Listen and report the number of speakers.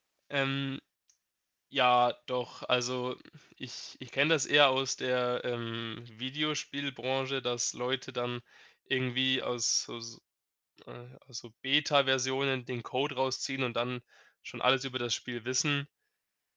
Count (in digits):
1